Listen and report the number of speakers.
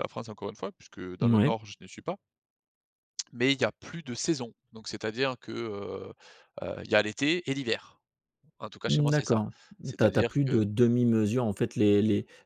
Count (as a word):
two